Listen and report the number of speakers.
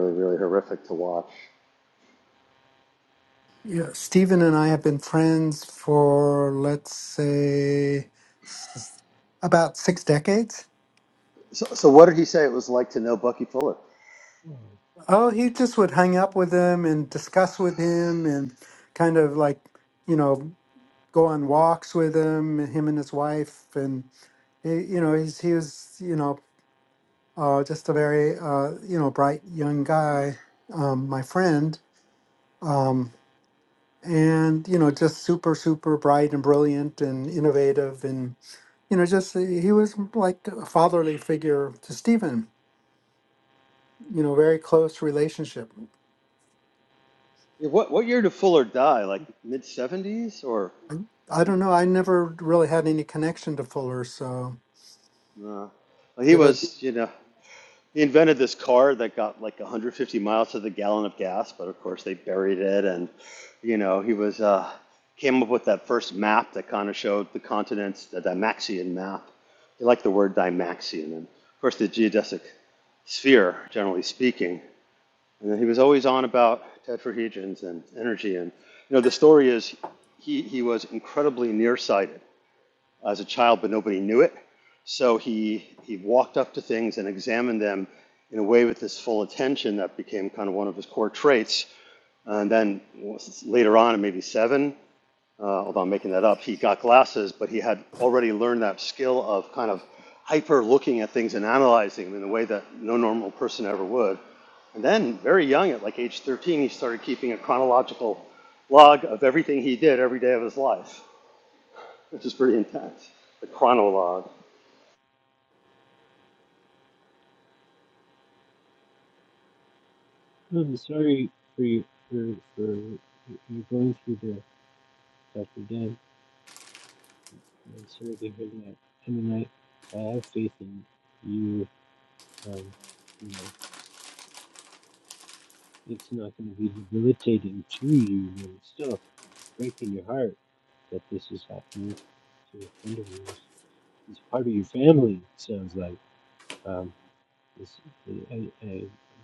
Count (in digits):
3